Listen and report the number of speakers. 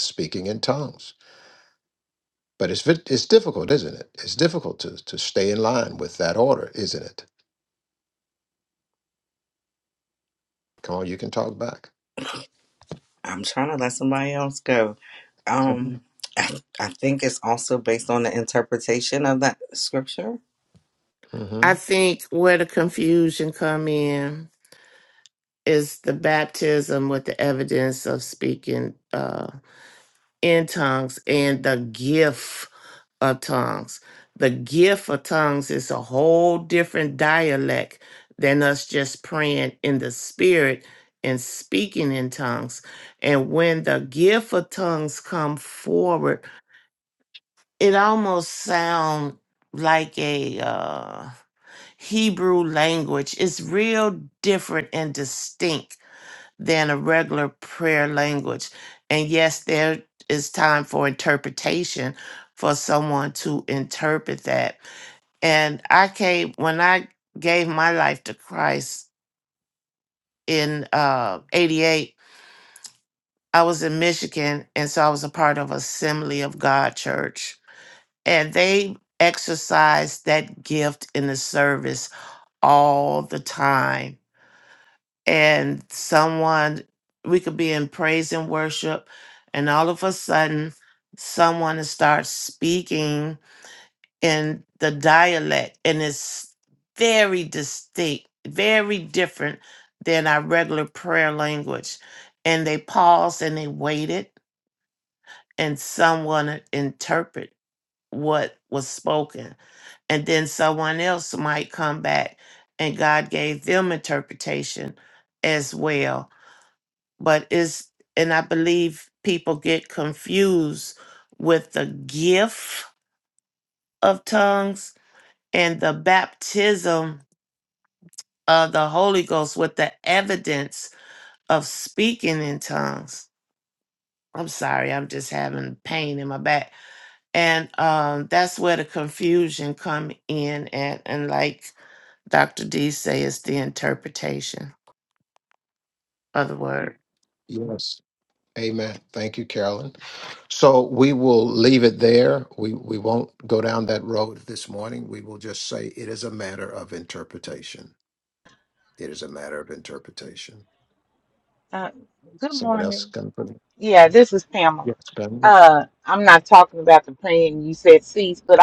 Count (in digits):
4